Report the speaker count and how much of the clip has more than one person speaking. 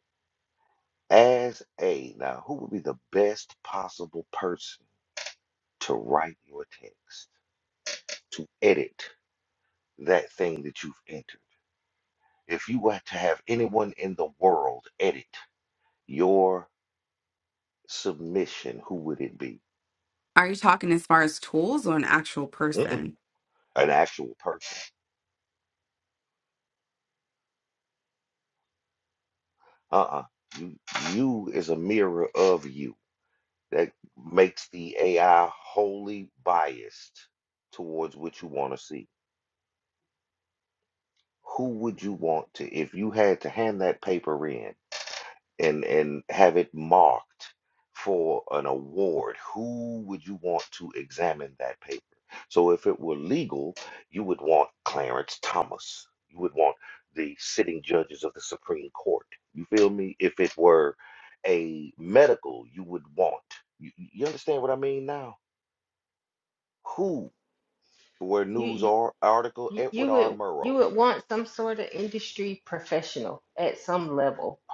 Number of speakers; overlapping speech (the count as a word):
three, about 2%